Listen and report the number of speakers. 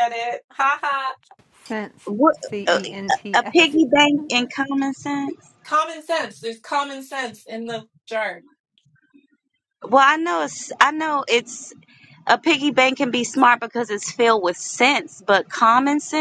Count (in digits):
3